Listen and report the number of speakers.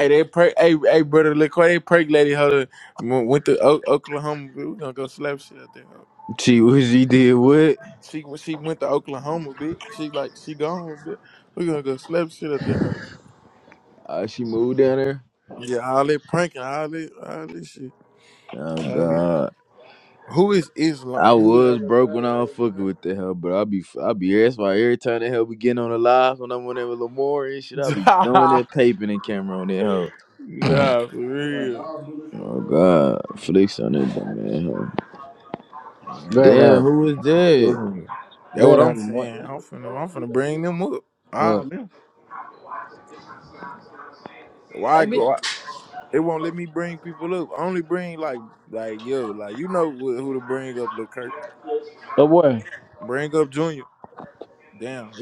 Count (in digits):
3